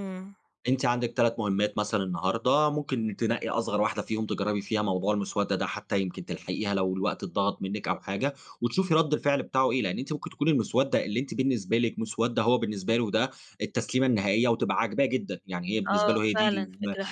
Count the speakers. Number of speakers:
two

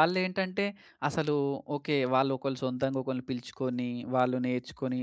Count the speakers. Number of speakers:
one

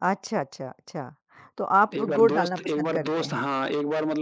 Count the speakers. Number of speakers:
two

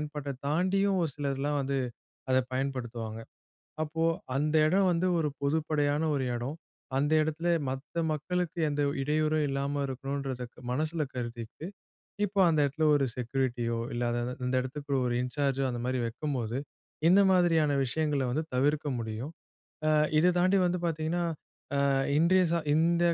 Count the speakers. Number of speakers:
one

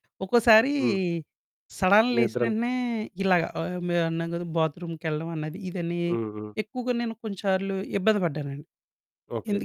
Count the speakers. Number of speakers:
two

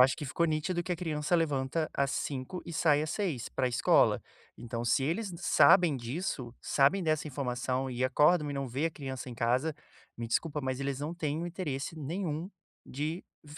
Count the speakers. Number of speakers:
one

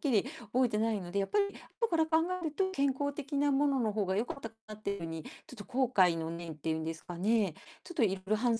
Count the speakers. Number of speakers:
one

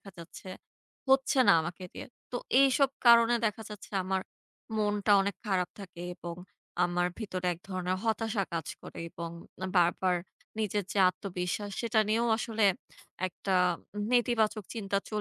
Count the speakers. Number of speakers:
one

